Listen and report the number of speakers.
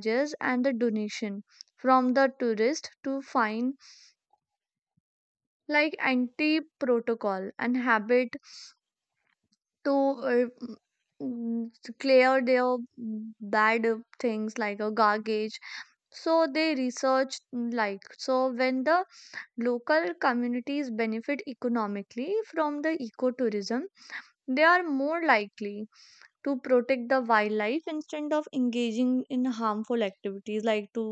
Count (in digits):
1